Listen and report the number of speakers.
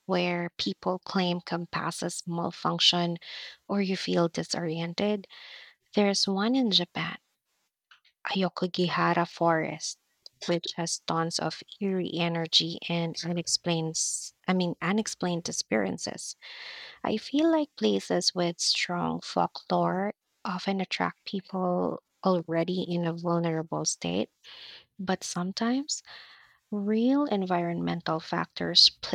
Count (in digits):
1